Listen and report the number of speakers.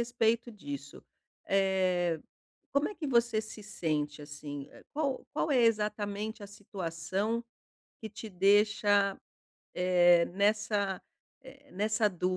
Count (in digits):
1